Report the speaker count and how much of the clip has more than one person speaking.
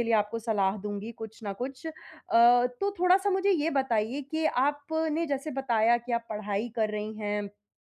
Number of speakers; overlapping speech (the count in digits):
1, no overlap